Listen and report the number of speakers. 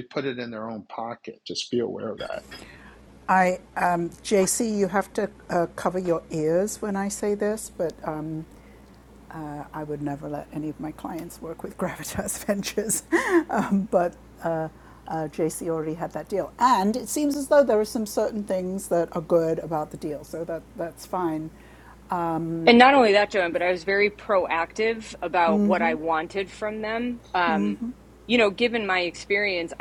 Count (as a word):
three